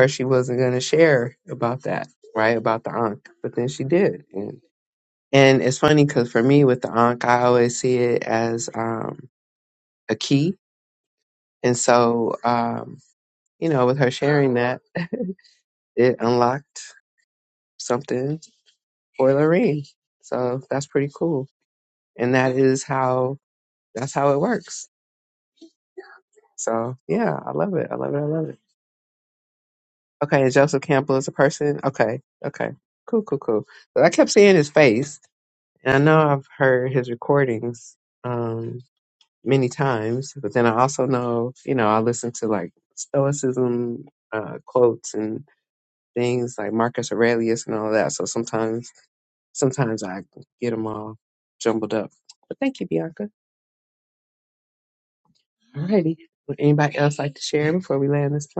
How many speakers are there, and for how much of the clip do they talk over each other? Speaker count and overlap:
1, no overlap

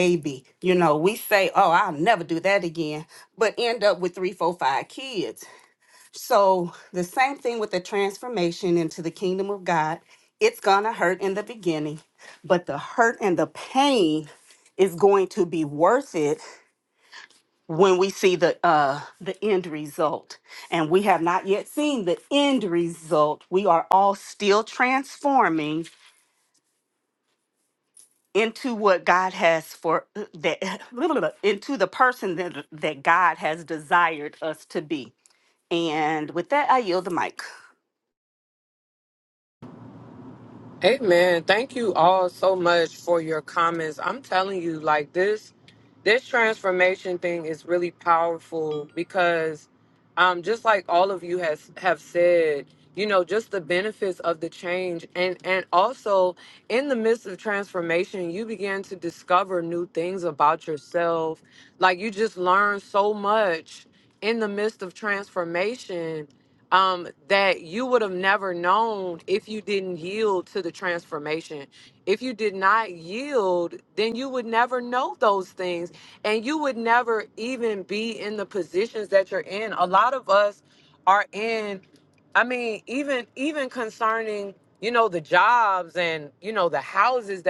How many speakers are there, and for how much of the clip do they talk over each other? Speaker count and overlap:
2, no overlap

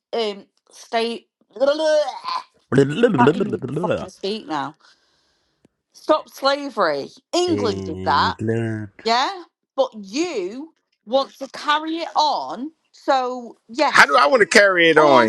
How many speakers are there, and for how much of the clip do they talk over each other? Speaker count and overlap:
3, about 12%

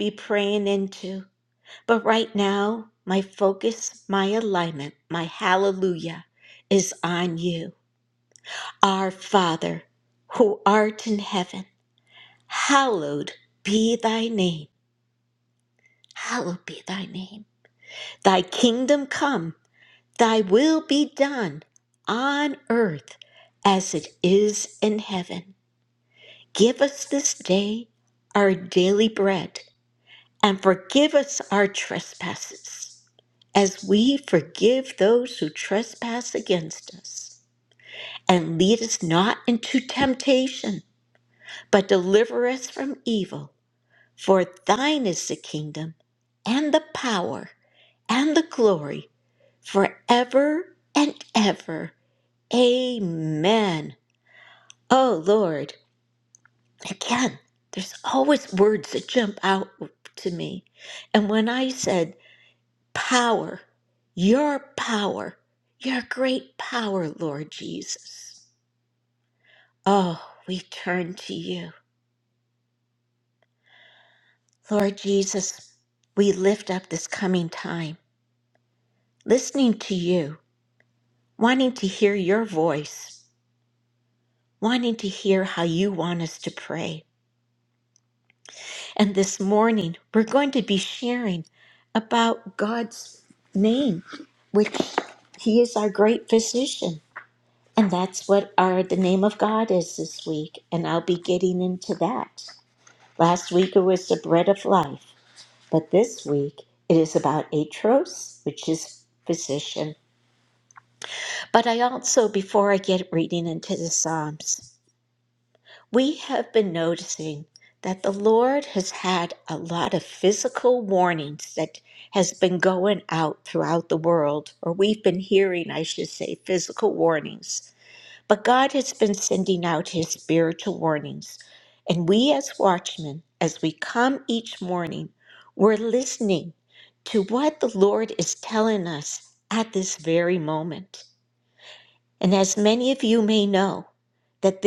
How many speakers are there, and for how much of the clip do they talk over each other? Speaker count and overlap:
1, no overlap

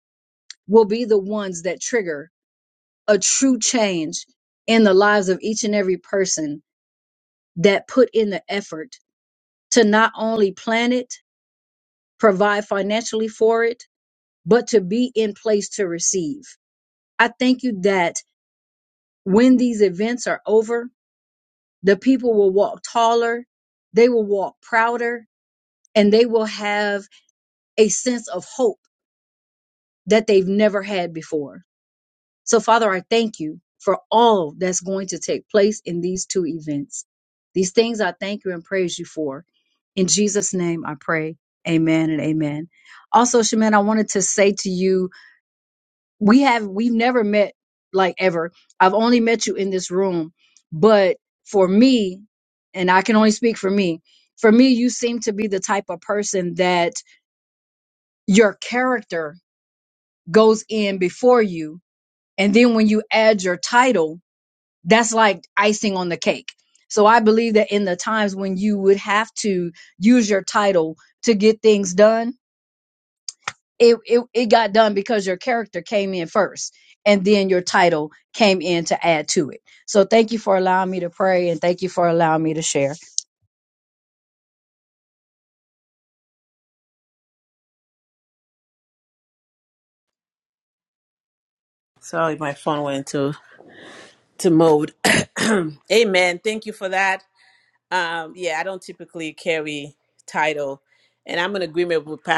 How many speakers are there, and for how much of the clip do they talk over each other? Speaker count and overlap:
2, no overlap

